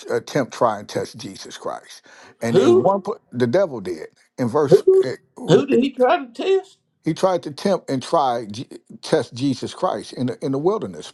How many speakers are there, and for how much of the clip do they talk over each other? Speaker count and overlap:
2, about 8%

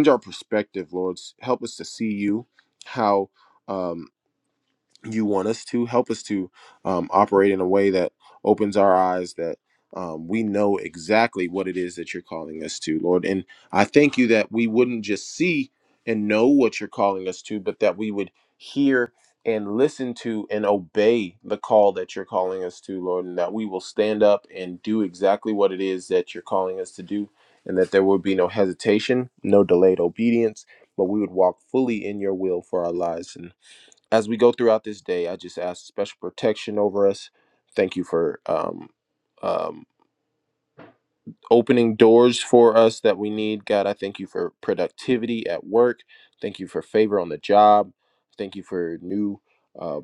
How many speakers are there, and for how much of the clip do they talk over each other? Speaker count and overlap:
1, no overlap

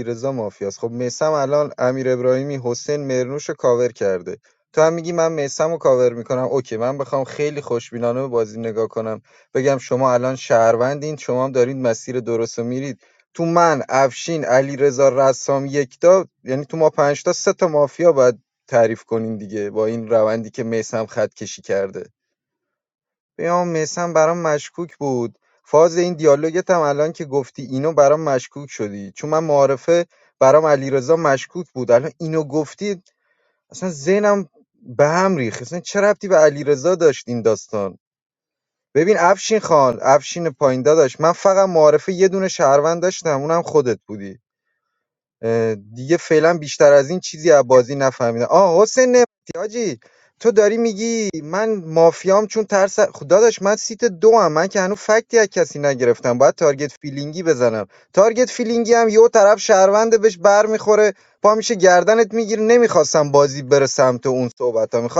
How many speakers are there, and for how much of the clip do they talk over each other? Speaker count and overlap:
1, no overlap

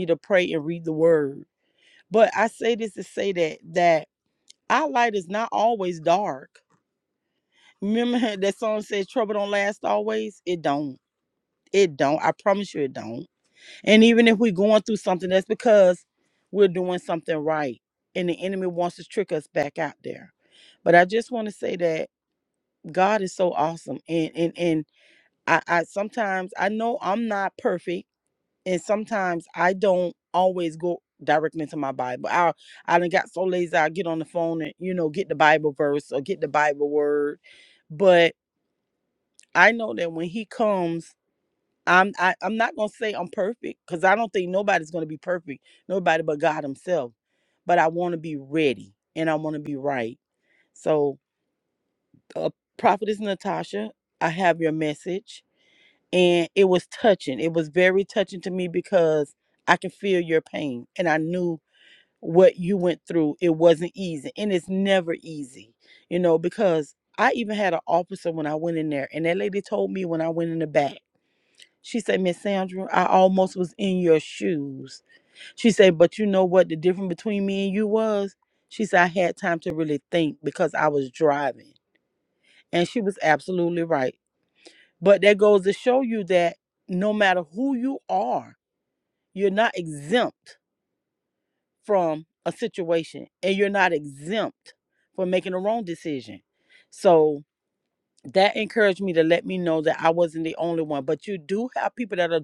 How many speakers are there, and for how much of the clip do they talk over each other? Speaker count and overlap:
1, no overlap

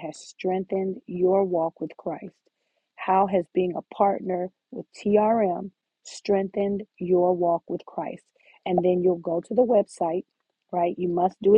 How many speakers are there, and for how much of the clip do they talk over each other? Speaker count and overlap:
1, no overlap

